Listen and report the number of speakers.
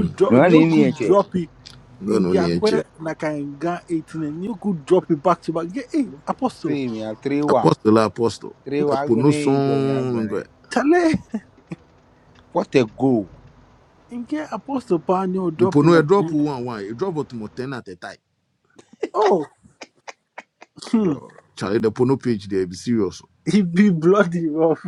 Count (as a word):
three